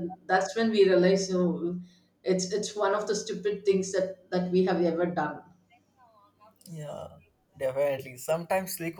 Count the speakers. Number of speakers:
two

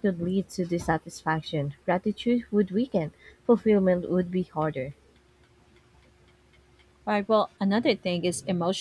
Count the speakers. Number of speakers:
two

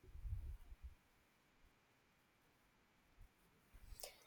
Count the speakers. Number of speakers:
zero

